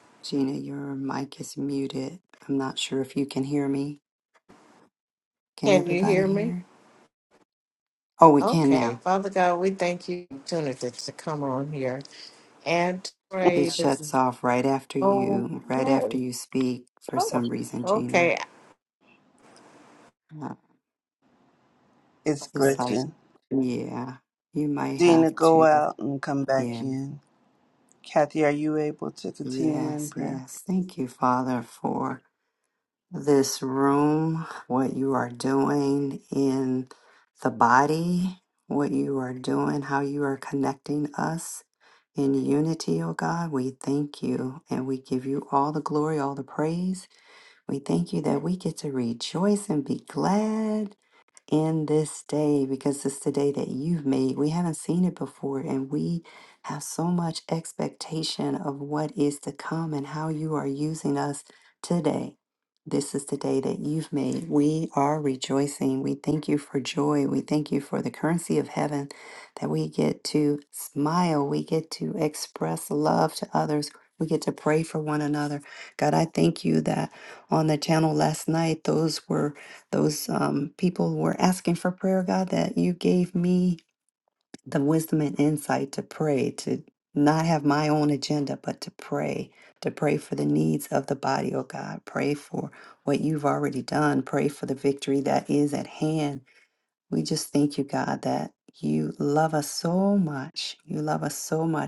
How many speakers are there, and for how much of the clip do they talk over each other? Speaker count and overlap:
3, about 6%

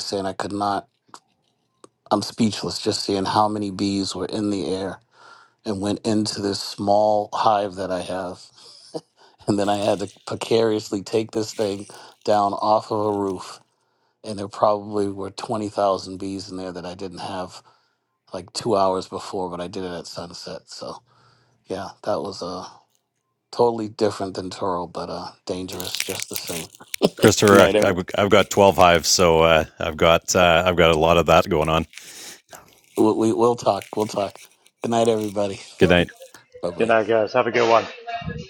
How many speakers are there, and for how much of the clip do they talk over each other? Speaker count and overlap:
3, about 2%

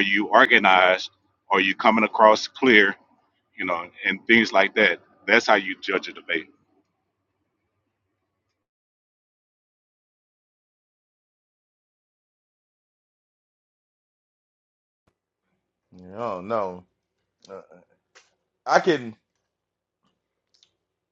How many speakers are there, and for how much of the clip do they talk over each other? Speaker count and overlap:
2, no overlap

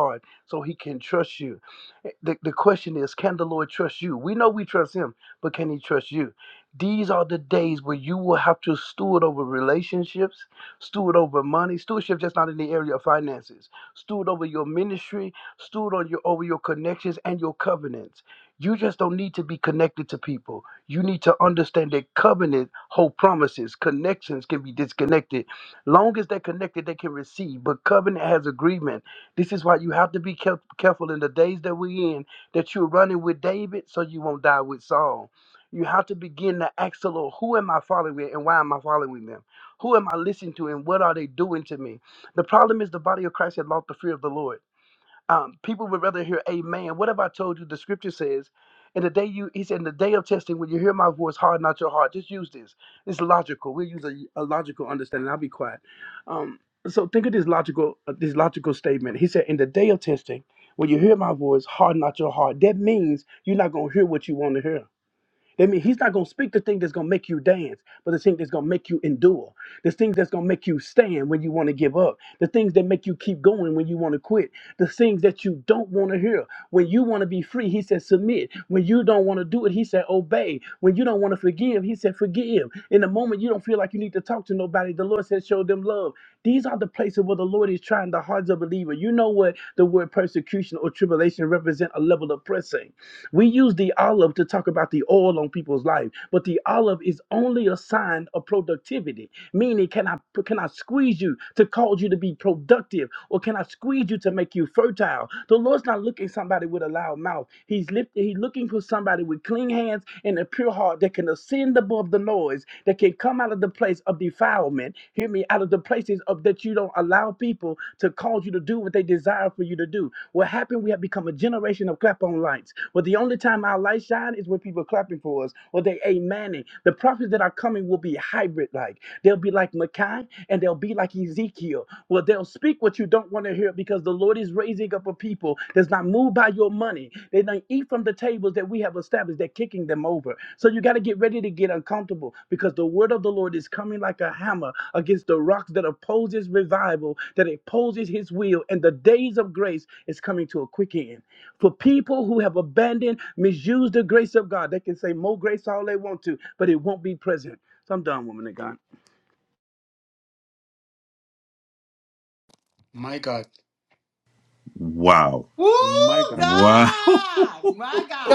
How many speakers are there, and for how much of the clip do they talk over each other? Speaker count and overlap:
4, under 1%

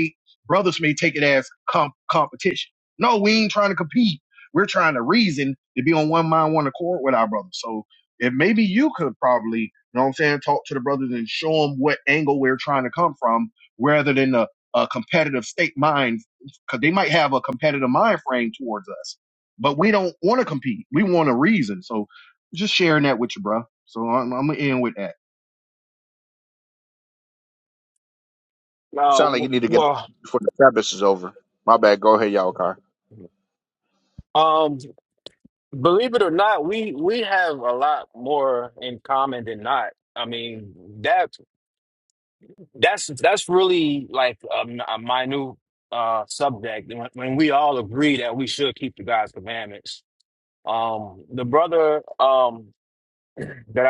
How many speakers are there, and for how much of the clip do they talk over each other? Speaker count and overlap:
3, about 1%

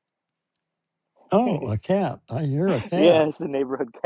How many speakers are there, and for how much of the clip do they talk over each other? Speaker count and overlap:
2, about 7%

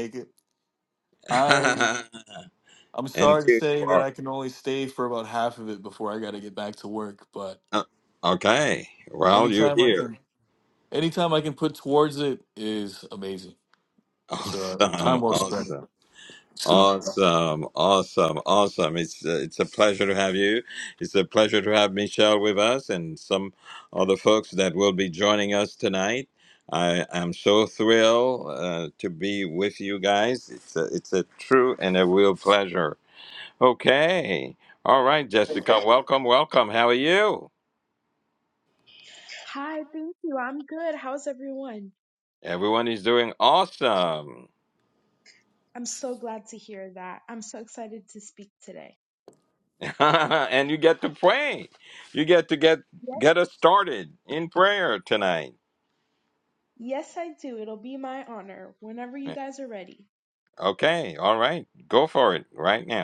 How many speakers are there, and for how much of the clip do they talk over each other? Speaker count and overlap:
3, about 5%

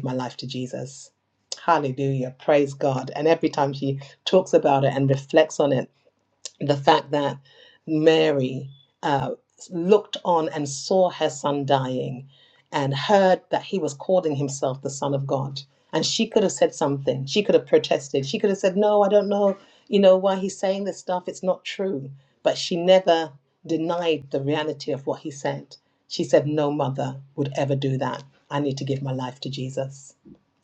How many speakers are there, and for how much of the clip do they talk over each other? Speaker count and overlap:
1, no overlap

